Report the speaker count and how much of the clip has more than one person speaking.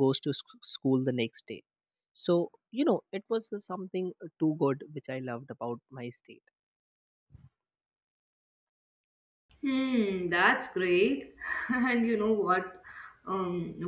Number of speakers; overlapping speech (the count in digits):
2, no overlap